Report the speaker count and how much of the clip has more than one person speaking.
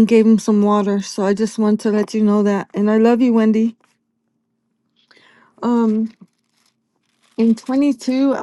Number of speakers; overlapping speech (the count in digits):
1, no overlap